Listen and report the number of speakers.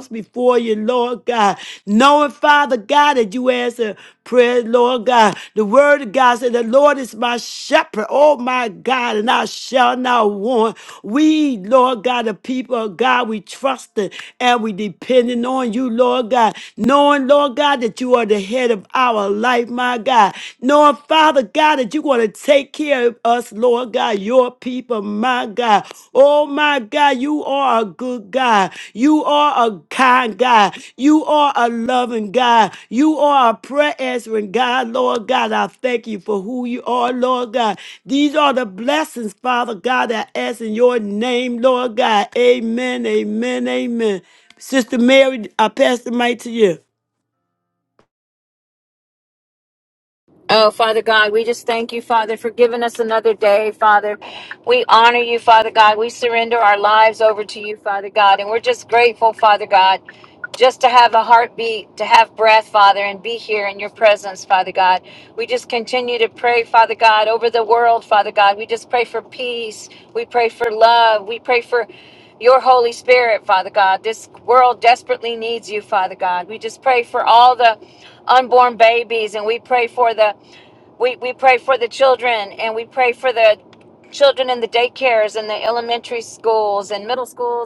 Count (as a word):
two